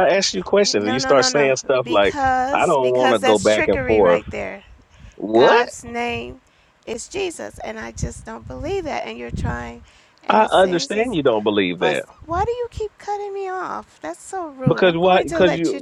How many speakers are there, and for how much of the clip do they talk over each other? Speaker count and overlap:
two, about 38%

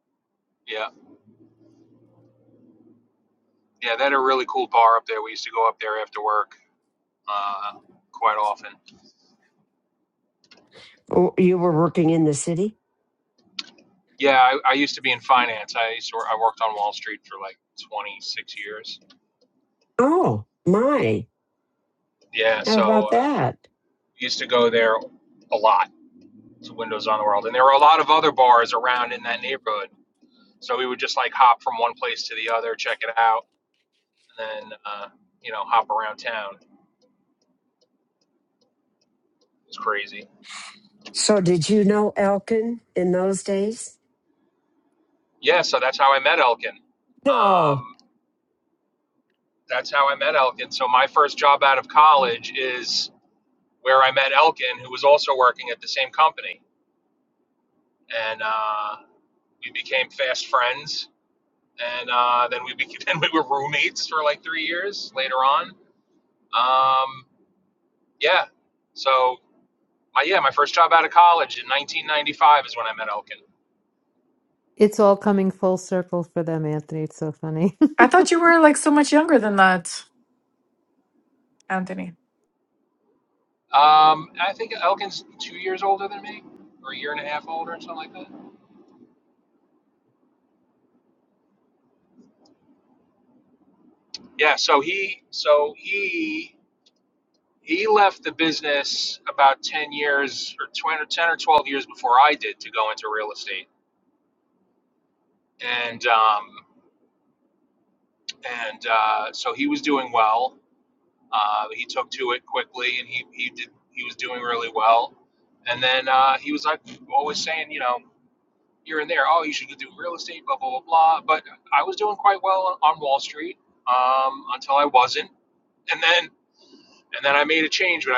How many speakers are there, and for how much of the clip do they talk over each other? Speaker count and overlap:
four, about 1%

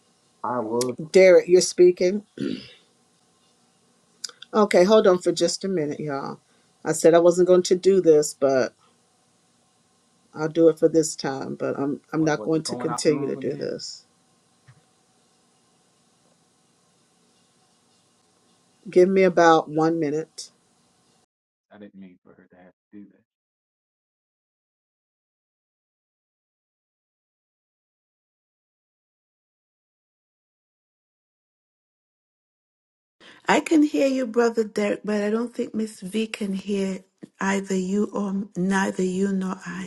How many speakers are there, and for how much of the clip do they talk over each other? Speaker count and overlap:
three, about 4%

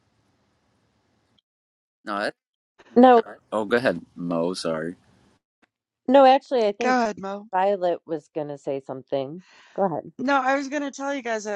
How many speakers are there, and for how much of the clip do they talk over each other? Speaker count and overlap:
three, about 1%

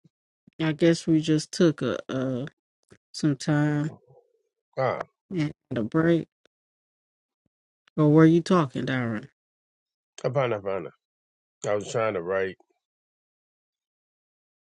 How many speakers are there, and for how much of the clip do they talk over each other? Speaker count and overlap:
two, no overlap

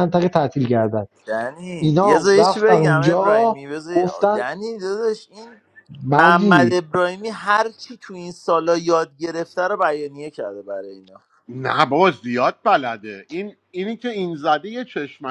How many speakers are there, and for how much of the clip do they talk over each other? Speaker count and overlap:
three, about 19%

